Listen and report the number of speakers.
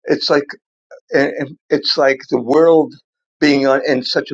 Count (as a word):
one